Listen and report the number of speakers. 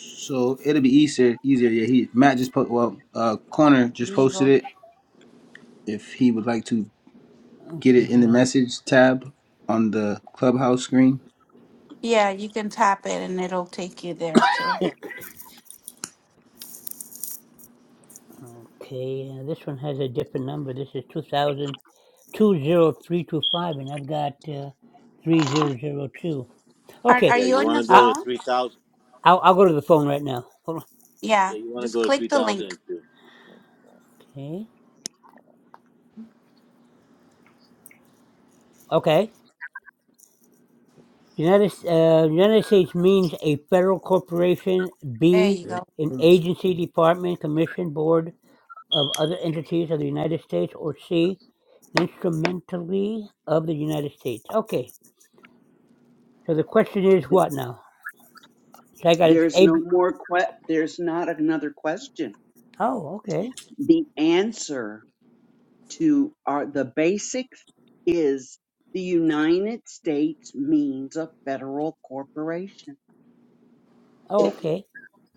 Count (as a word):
five